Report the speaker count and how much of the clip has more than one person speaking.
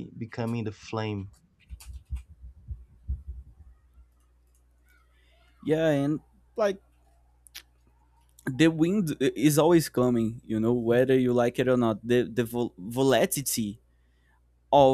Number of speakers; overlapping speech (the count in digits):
2, no overlap